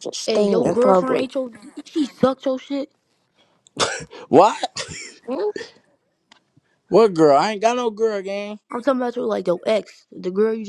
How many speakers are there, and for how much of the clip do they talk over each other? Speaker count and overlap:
three, about 9%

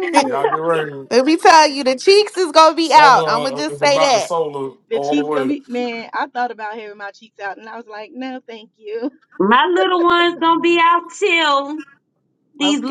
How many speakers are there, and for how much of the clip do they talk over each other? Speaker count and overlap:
four, about 18%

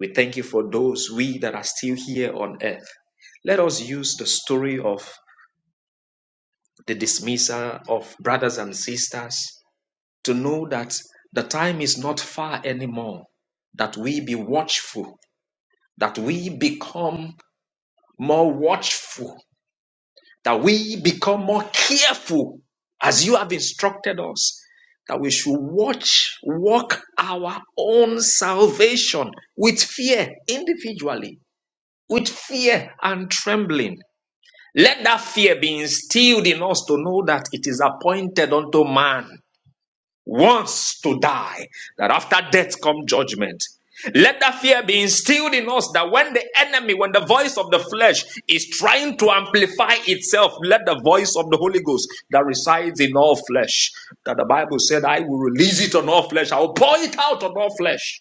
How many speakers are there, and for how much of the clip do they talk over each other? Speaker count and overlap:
one, no overlap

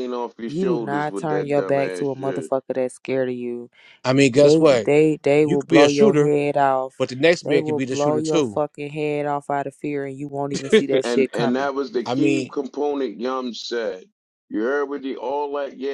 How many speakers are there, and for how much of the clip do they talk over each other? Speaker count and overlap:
three, about 35%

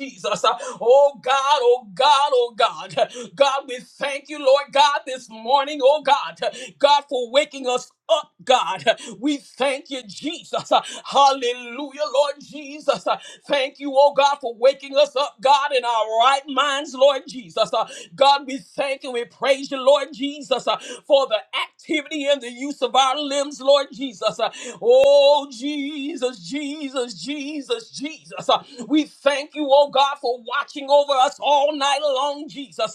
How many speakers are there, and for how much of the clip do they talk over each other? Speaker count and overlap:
one, no overlap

